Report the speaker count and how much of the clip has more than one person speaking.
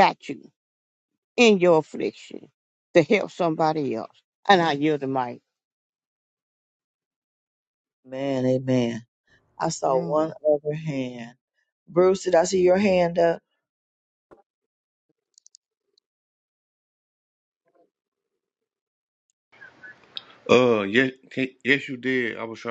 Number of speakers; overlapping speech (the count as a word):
three, no overlap